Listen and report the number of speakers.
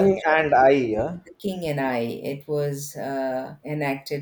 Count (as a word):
two